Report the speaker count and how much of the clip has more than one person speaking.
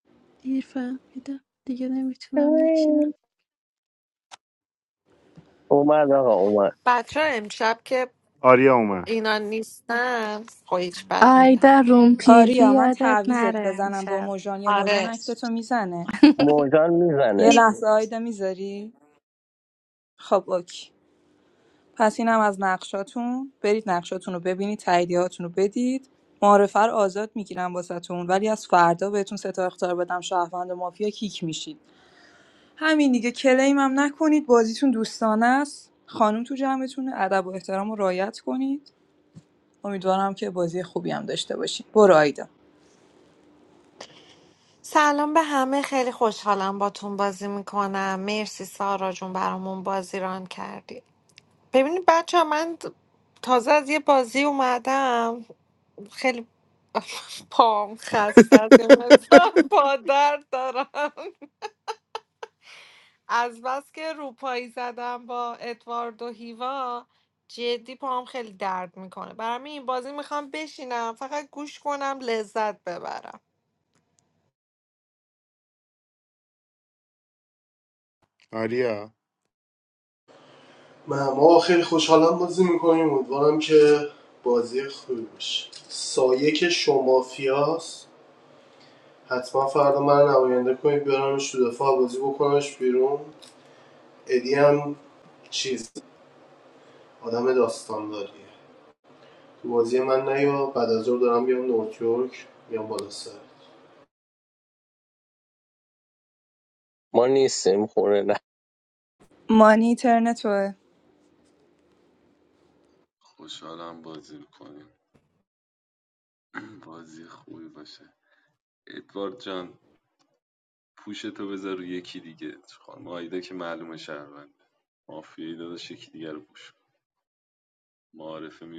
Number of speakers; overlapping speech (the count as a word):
eight, about 3%